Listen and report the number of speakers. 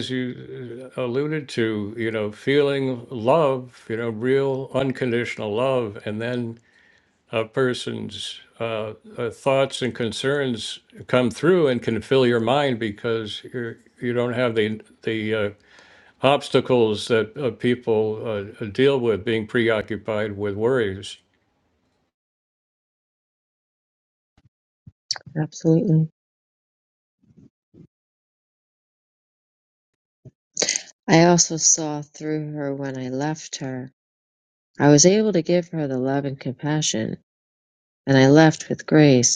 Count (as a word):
two